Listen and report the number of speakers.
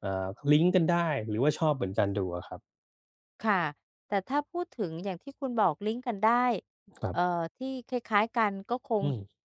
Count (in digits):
2